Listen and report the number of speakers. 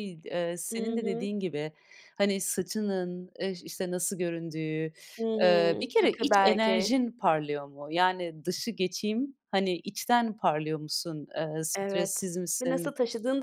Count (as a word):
two